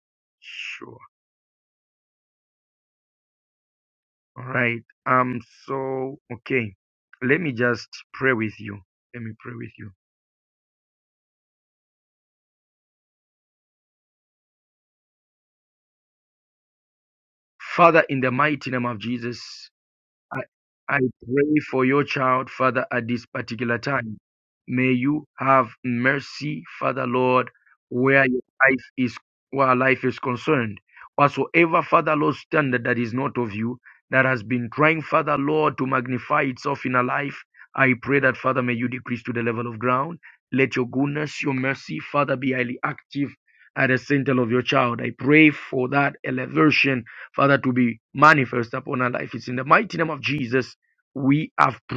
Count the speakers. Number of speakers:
1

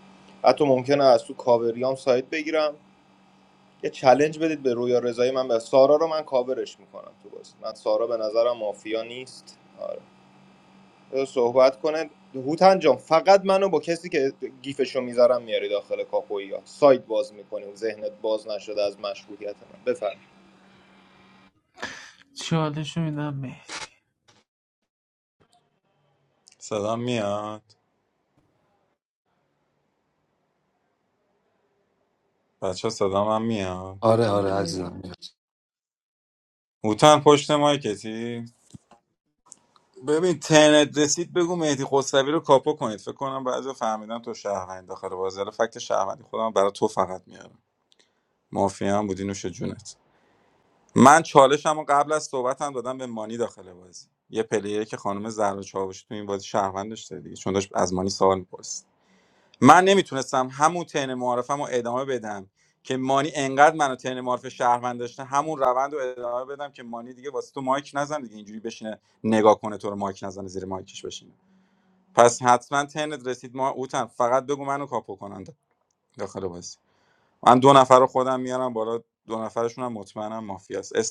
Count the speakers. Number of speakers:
4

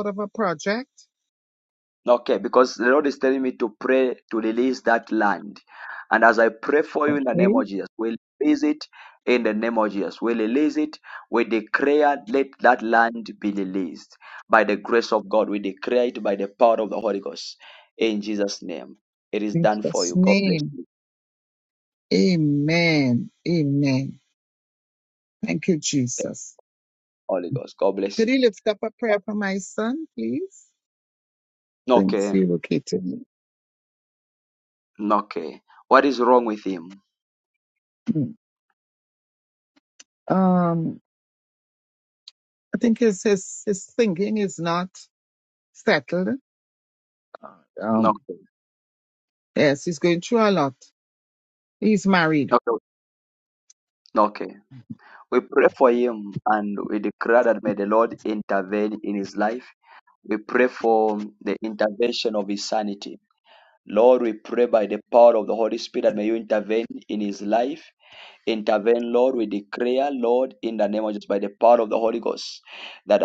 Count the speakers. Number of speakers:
2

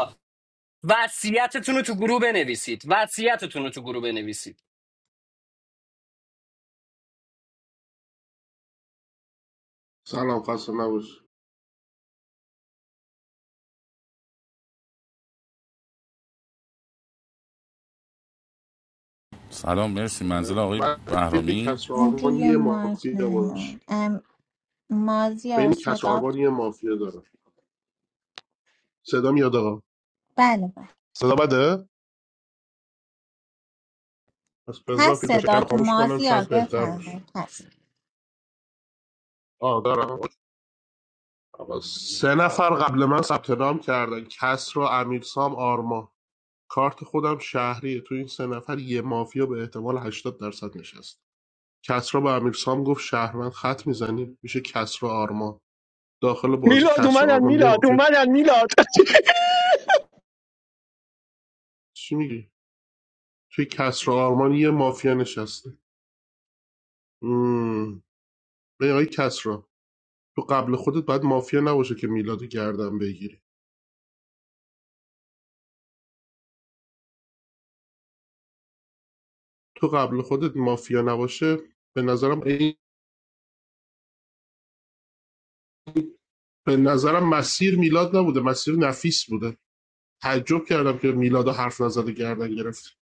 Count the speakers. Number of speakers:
5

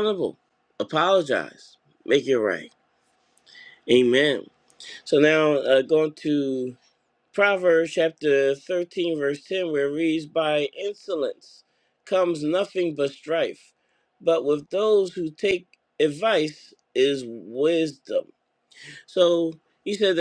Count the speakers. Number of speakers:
1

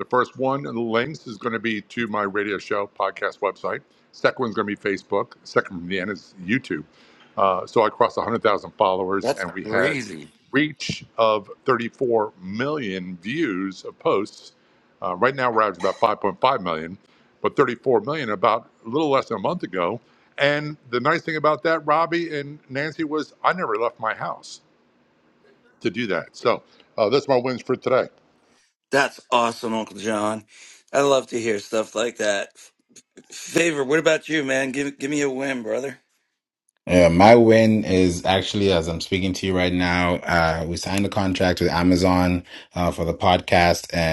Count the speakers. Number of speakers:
3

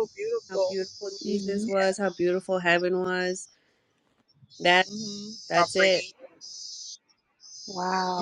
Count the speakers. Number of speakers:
3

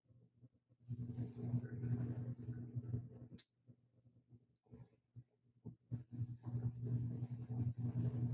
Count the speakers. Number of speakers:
0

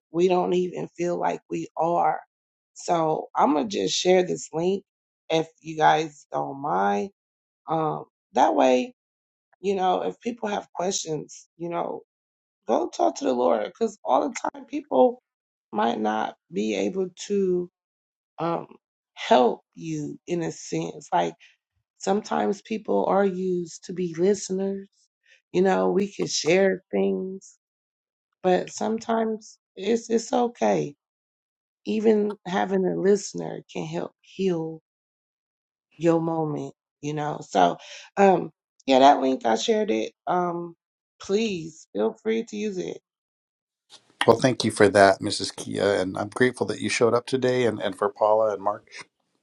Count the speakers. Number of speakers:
2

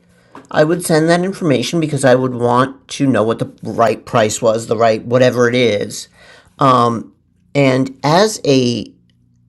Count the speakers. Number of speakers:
1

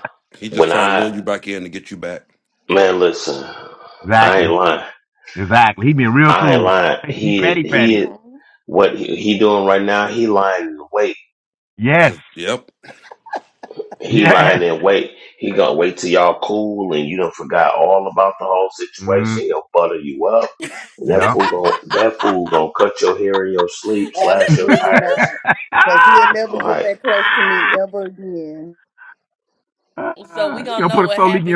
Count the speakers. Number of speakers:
5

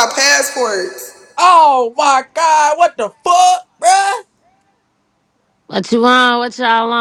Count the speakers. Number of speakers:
3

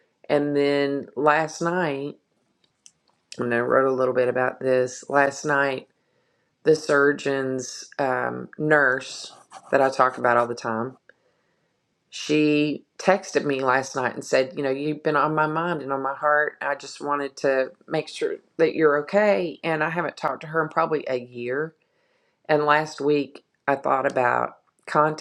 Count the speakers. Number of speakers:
1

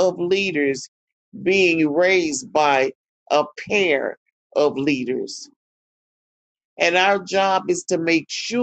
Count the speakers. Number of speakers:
1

